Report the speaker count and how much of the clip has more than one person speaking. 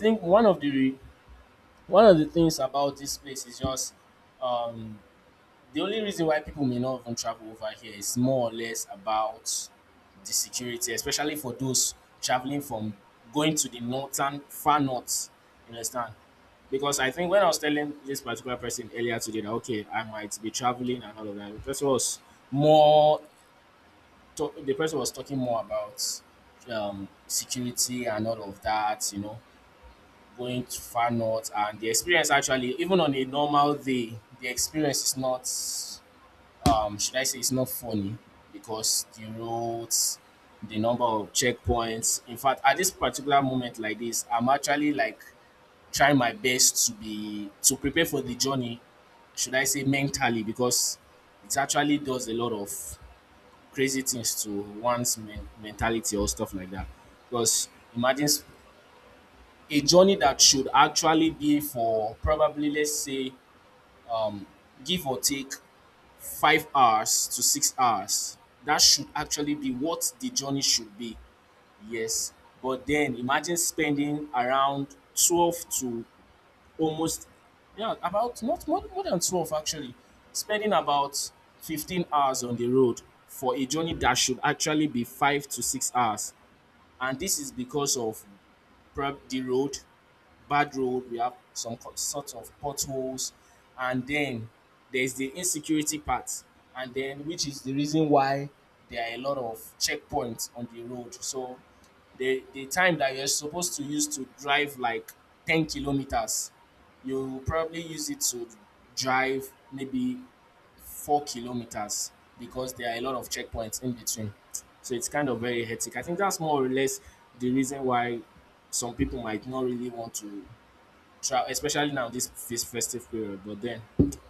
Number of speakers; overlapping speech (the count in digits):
1, no overlap